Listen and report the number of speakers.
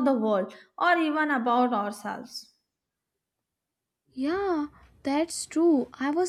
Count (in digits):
2